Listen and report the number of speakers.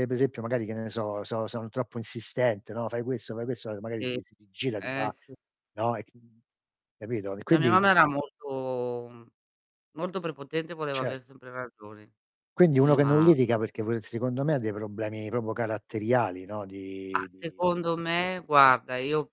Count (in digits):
2